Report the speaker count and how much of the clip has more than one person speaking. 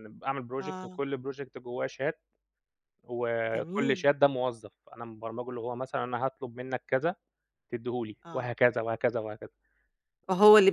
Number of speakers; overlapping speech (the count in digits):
2, about 10%